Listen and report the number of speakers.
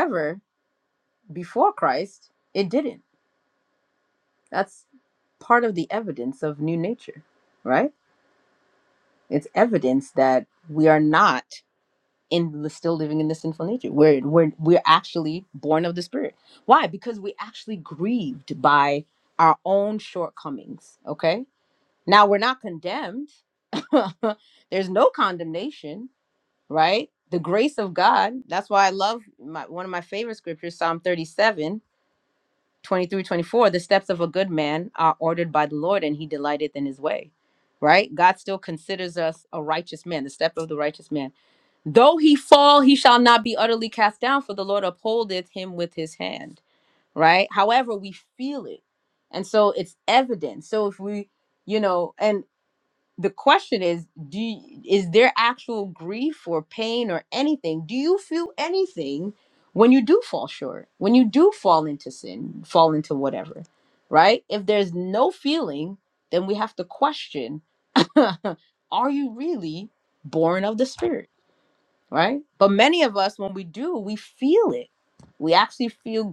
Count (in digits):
1